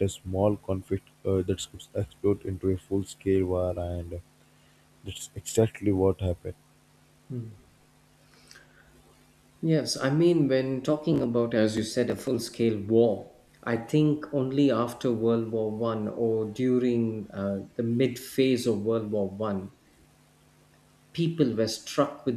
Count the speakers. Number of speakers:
2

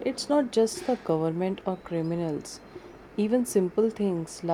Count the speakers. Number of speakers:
1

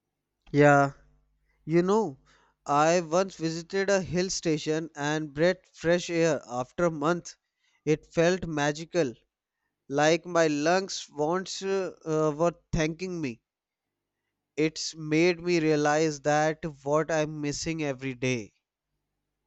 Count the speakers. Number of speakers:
1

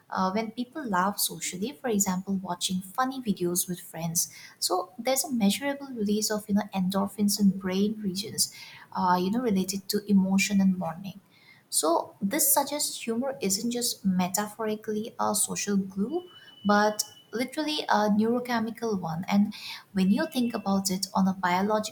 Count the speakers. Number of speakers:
1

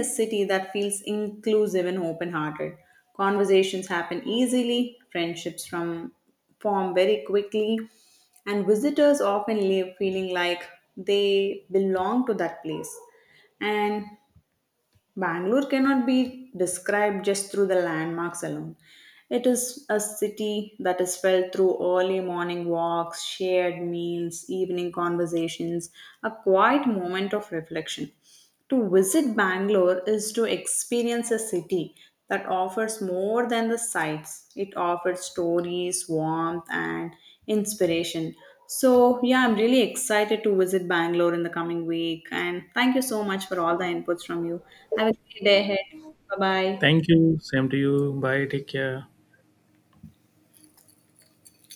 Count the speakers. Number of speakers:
2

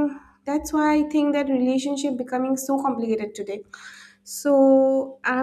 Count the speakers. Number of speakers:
1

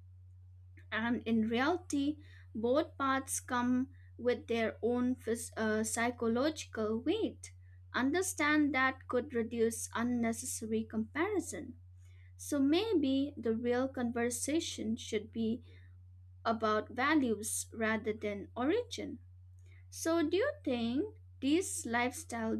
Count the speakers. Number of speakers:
1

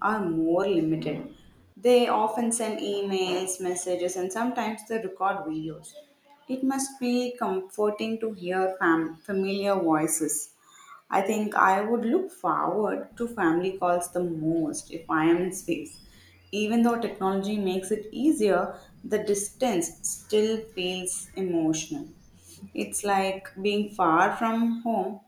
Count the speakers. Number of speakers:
1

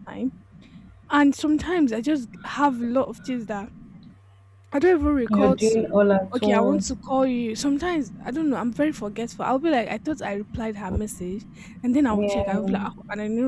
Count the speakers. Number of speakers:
2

